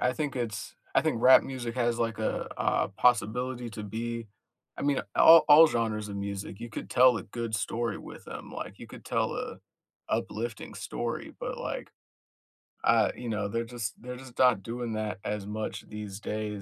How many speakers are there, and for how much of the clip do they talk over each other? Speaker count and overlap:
one, no overlap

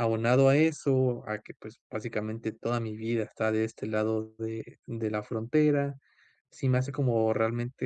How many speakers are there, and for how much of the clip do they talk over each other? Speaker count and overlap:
one, no overlap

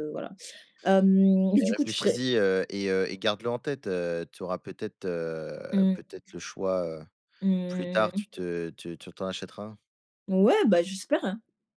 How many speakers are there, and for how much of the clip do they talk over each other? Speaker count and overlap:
two, about 10%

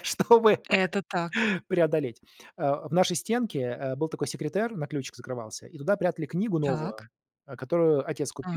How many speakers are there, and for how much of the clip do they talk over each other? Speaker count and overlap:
two, about 6%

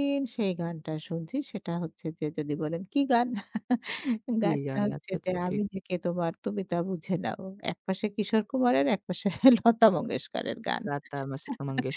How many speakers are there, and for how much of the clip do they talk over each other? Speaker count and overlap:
two, about 10%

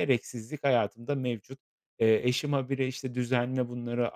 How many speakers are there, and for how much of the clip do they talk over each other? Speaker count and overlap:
one, no overlap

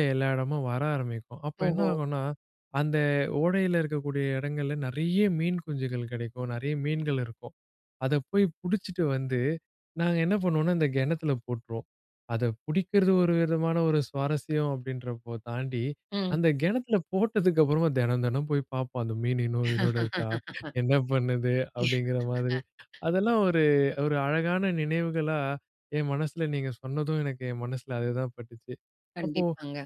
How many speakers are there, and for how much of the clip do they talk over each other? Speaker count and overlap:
two, about 2%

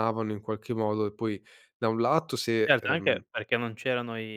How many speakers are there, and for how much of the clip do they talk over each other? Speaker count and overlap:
two, about 12%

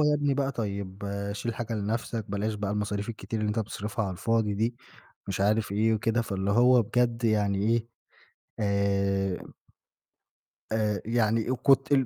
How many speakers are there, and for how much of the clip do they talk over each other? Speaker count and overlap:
one, no overlap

